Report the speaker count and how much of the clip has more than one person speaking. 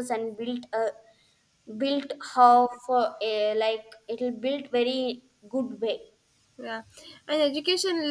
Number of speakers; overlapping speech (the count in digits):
2, no overlap